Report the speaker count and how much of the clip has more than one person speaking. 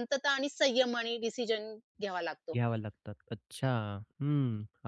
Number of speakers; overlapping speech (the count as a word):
two, under 1%